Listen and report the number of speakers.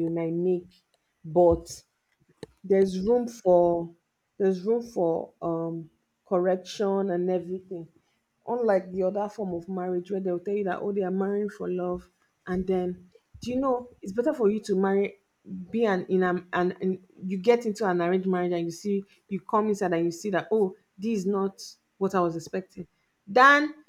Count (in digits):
1